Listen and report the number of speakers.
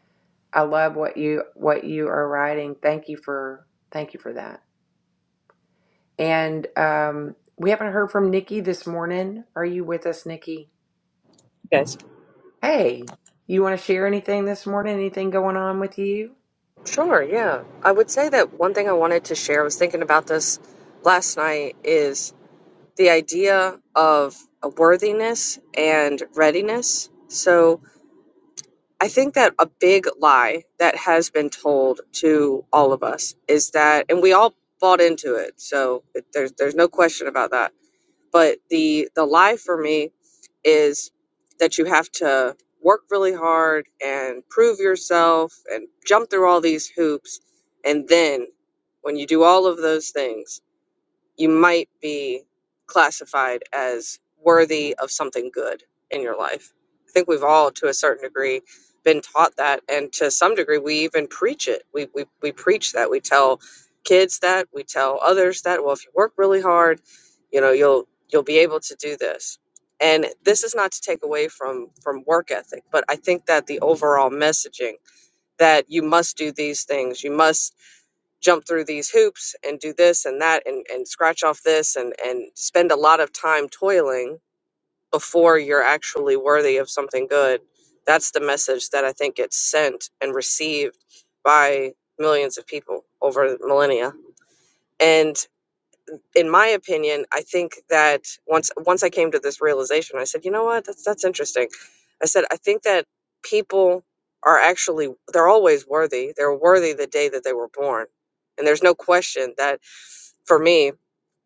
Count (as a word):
two